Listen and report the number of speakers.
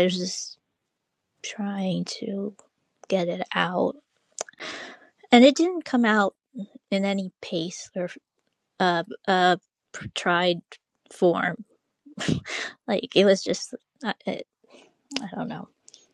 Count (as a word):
one